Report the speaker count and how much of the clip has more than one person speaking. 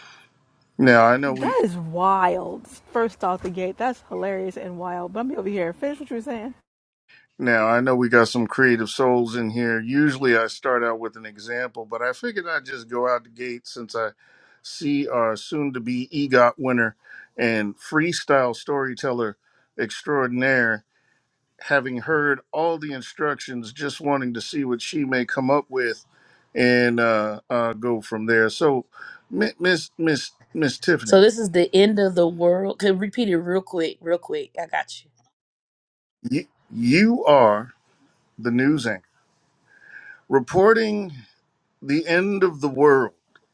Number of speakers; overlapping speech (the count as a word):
three, about 1%